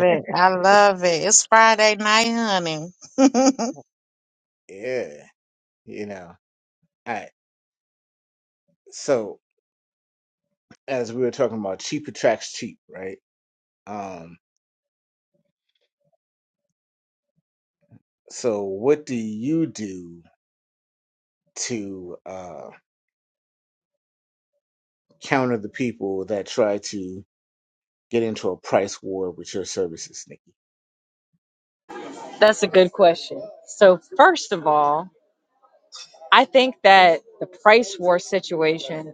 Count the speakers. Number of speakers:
3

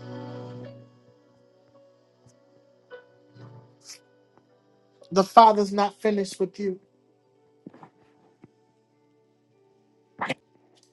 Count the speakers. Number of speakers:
1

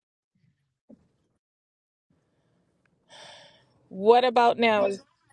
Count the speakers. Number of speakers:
1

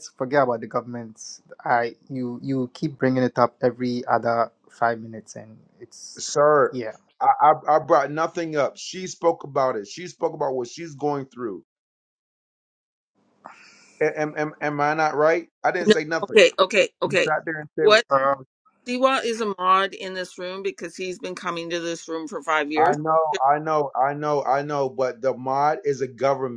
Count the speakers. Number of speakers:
3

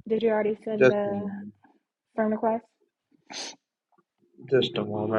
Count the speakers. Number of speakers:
2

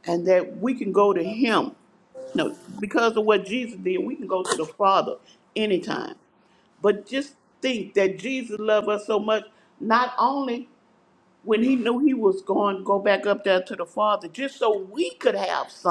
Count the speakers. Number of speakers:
1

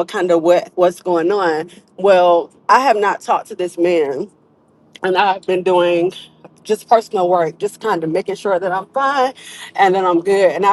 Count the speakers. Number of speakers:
1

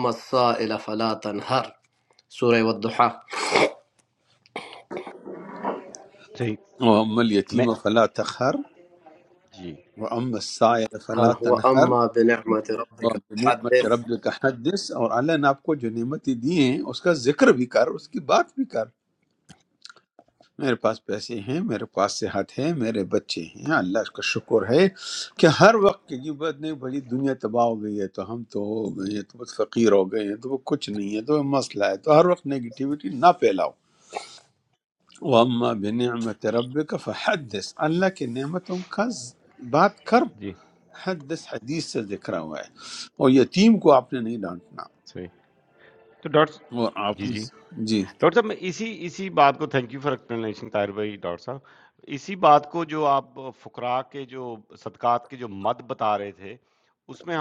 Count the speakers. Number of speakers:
3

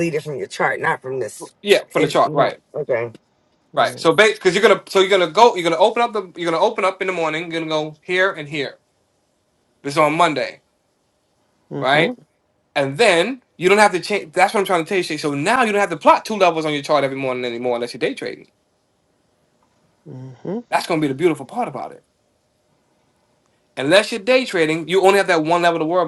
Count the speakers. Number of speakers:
3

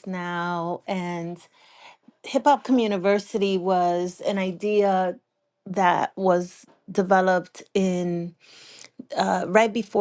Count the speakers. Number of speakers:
1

